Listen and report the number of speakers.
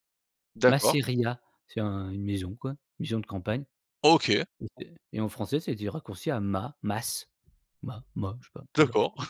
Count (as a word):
two